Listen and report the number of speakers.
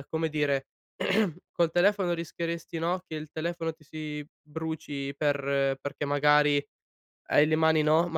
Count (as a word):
one